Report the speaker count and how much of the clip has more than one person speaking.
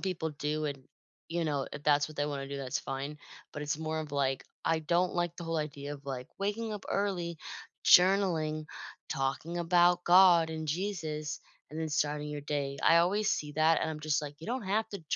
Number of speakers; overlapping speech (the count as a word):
one, no overlap